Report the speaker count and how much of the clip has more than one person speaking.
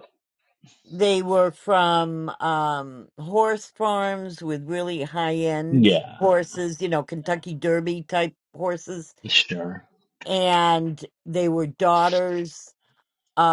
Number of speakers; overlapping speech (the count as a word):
two, about 4%